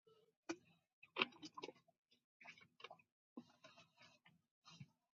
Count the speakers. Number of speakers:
0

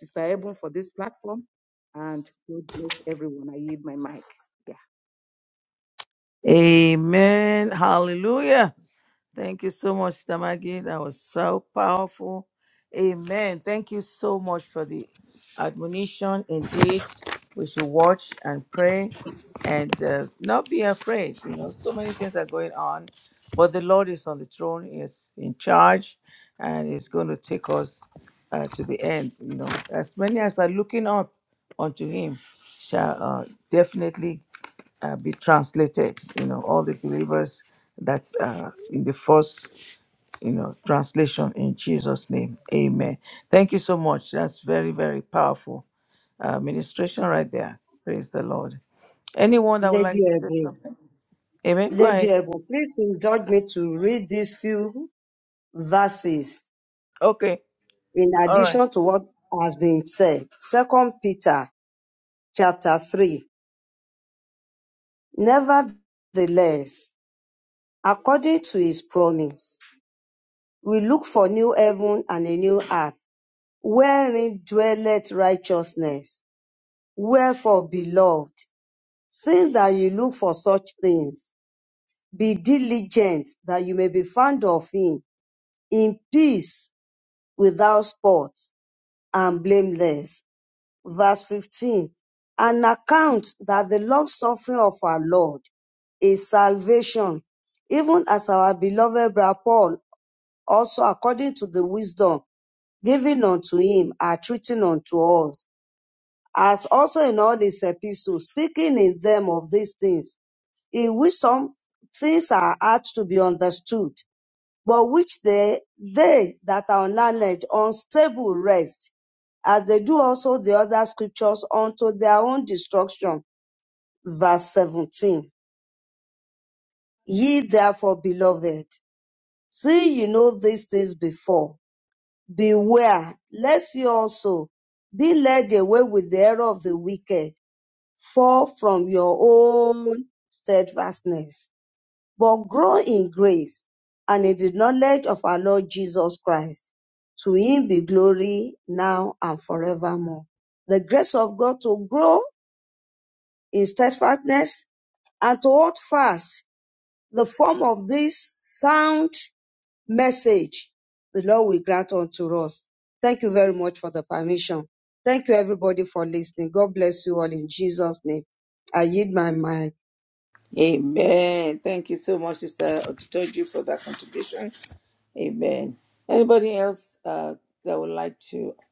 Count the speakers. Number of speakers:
3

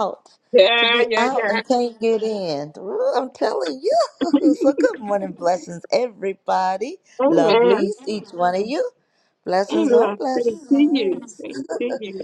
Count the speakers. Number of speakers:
2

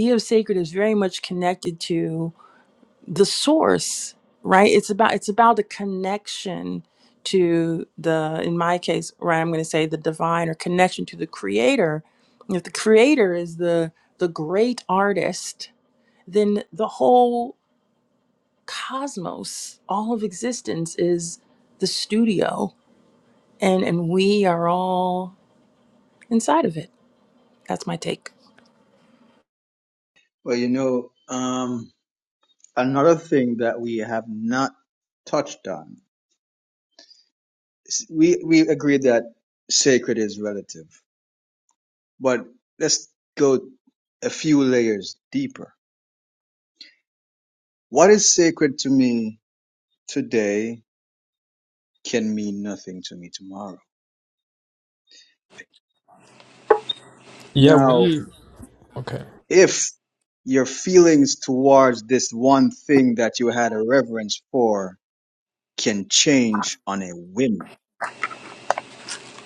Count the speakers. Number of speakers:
3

